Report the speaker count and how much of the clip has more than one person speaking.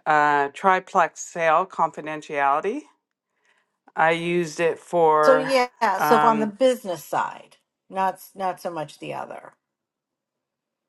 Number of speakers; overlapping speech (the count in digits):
2, about 8%